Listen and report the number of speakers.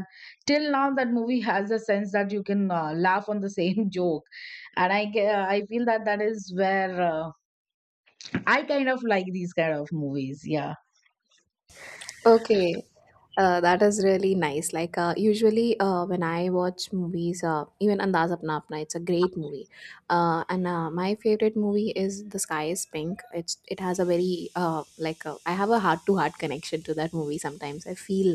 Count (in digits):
2